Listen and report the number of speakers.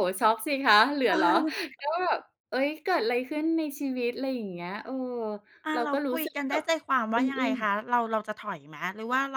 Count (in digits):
2